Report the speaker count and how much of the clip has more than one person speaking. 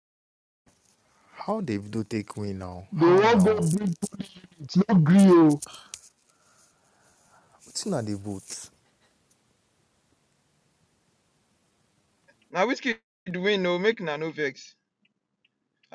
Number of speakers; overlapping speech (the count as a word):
three, about 5%